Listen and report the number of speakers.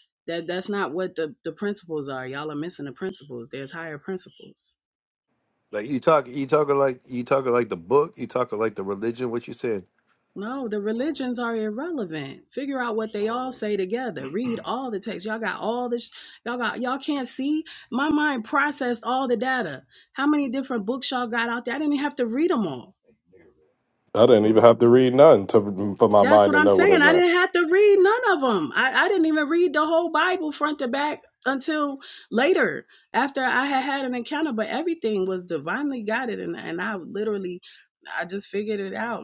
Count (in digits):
3